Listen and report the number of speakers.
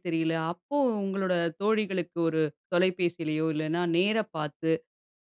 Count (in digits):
1